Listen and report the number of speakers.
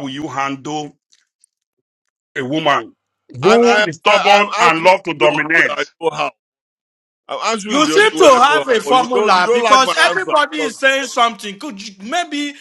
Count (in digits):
3